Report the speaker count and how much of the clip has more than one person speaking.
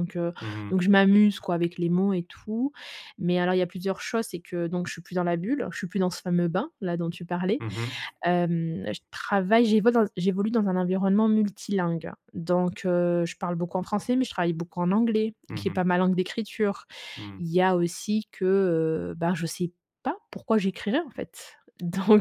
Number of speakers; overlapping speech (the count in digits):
2, about 2%